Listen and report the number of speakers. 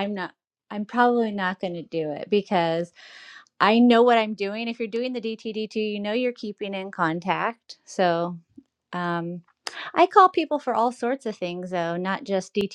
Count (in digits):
1